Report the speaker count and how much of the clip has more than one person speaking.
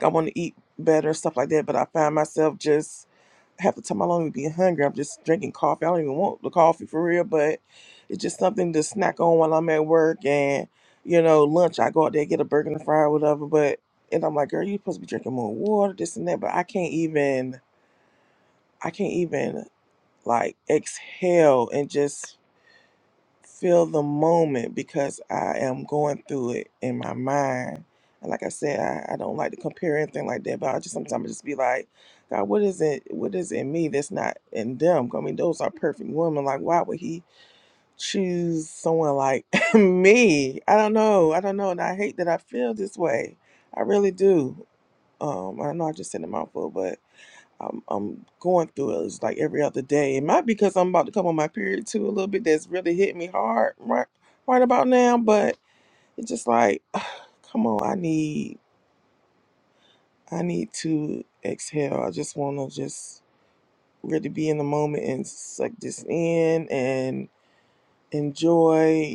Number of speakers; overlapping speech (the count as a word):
one, no overlap